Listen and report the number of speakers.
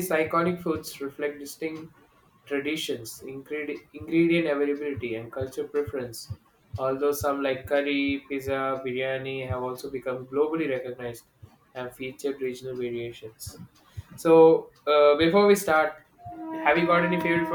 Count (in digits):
1